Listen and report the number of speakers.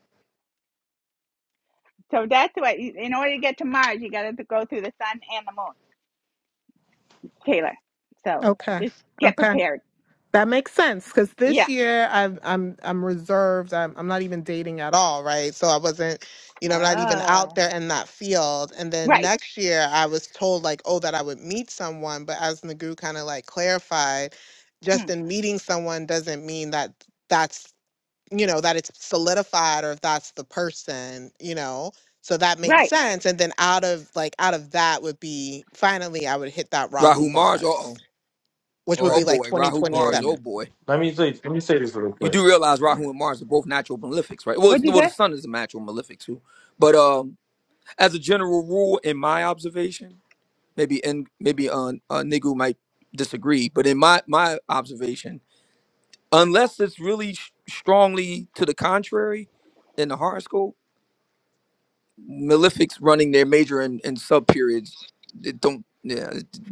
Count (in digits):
4